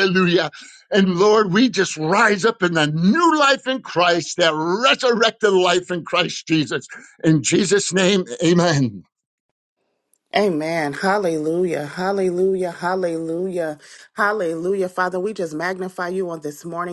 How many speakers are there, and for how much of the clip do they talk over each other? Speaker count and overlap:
2, no overlap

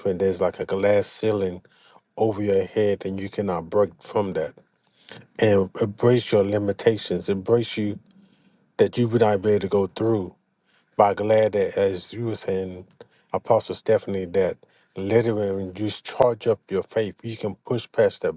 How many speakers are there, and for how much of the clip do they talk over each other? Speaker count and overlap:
1, no overlap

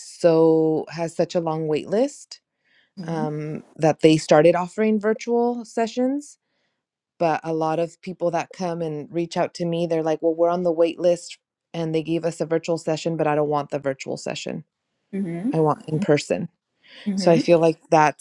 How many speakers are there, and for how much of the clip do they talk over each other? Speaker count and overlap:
2, about 3%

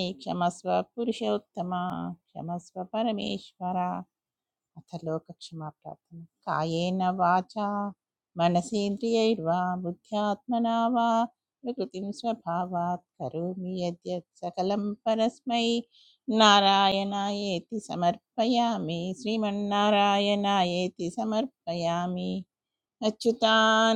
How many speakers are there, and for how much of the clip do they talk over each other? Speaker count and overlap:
1, no overlap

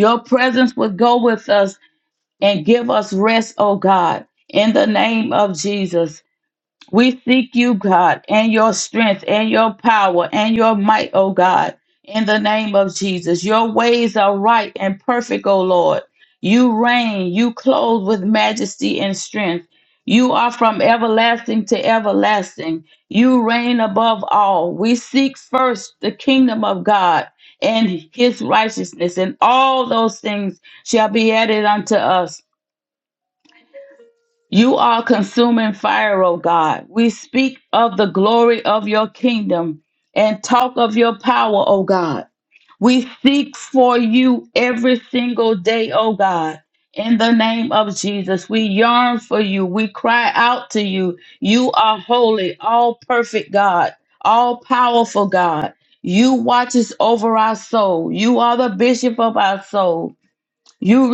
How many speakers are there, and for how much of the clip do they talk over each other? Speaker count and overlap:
1, no overlap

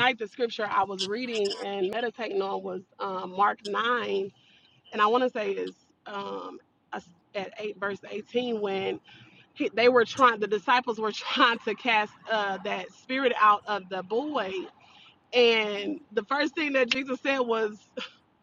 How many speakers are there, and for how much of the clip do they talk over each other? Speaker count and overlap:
1, no overlap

